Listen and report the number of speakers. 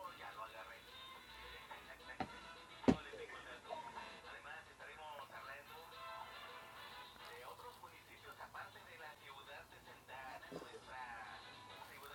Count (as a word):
zero